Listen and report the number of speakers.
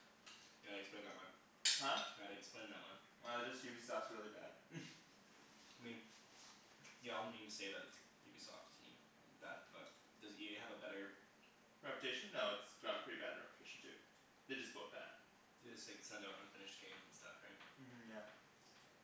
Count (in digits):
2